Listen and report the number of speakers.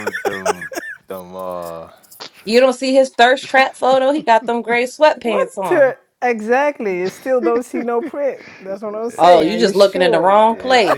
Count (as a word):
three